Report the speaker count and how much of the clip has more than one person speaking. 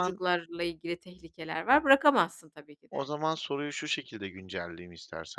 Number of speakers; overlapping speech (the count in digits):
2, about 6%